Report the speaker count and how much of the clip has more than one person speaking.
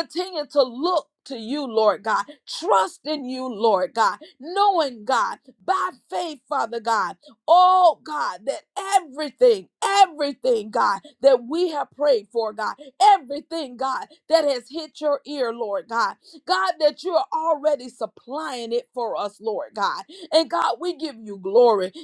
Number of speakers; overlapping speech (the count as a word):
one, no overlap